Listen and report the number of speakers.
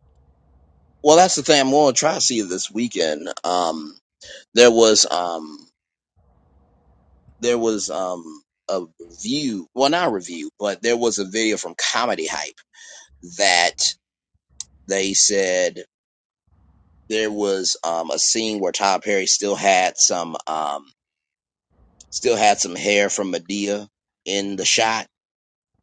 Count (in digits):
1